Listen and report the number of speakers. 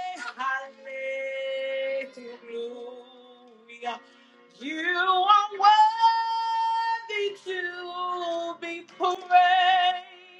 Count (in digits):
1